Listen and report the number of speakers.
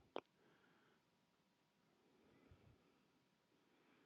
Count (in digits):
0